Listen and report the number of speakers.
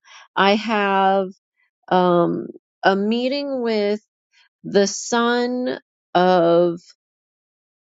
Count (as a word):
one